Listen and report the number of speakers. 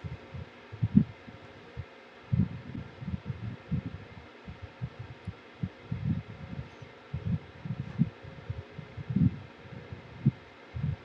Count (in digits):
0